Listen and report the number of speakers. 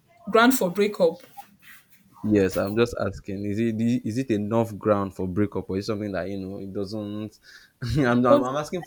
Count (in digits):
2